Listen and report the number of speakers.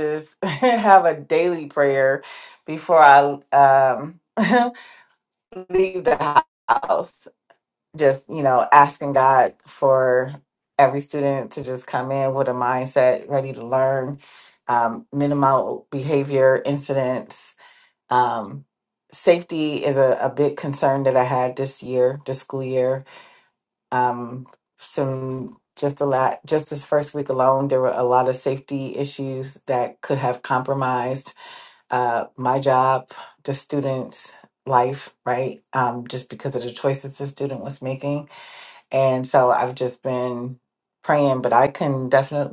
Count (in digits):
1